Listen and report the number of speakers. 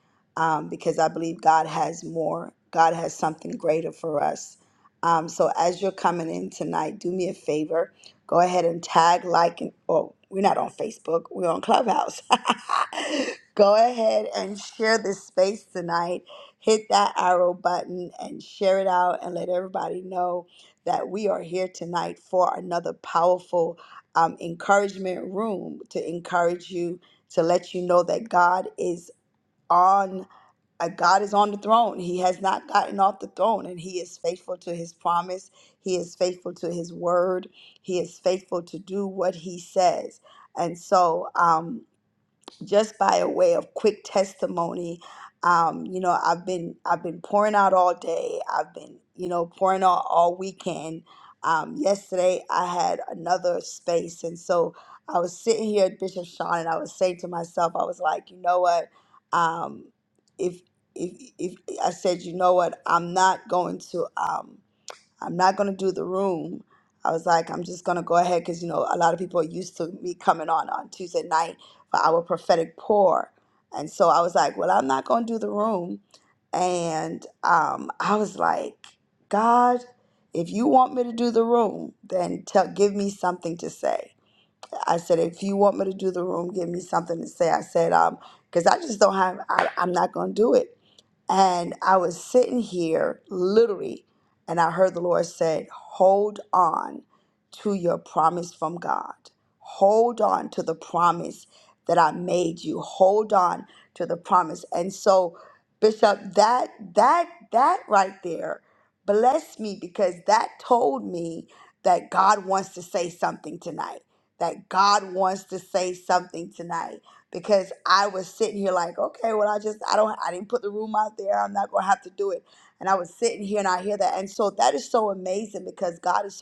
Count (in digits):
1